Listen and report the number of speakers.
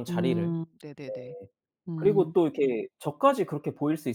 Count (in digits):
2